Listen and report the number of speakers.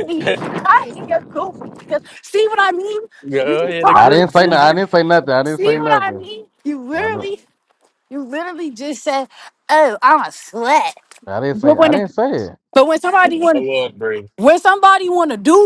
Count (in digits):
3